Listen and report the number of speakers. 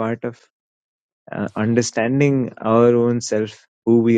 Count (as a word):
one